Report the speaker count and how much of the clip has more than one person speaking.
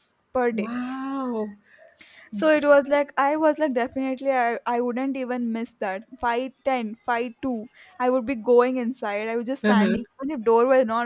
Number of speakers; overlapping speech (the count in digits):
2, about 6%